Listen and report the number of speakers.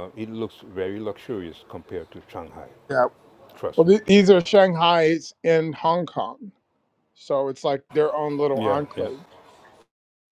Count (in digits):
2